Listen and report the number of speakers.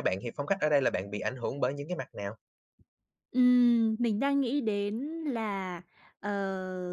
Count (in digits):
2